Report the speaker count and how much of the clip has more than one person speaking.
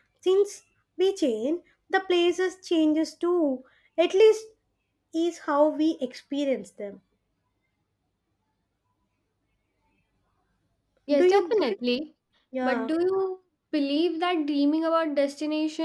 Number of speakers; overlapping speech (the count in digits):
2, about 4%